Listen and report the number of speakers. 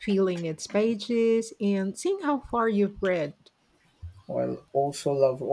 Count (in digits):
2